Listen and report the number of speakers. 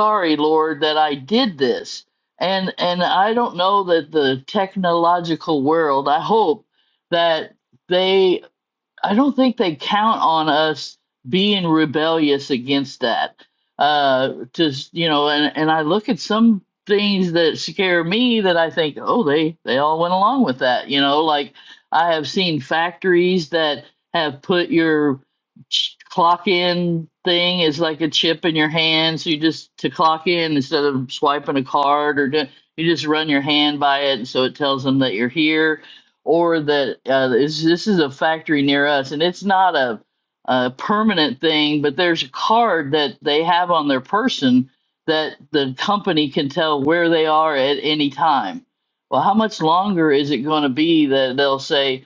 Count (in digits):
1